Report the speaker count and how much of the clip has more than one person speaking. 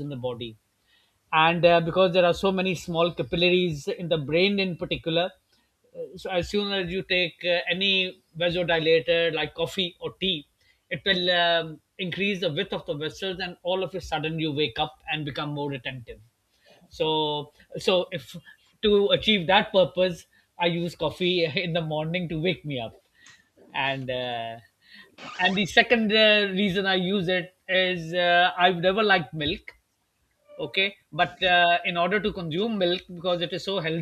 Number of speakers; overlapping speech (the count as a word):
one, no overlap